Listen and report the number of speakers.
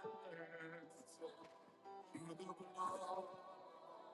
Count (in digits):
0